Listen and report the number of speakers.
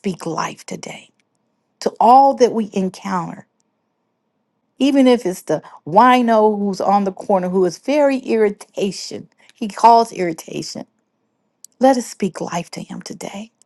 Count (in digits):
1